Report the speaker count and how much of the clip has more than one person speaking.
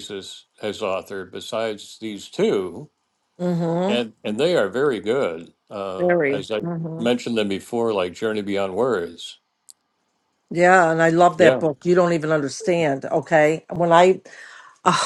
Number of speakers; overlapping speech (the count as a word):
two, about 7%